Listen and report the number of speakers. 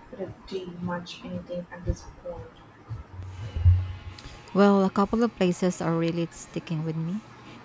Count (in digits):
2